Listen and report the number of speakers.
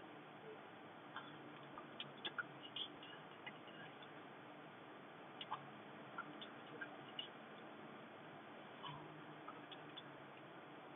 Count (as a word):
zero